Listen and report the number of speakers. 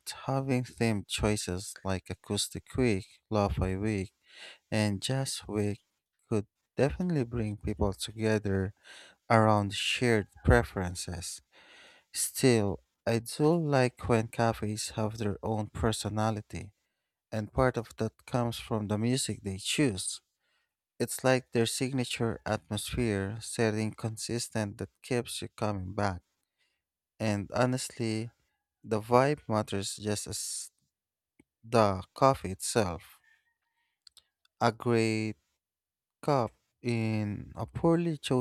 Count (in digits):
1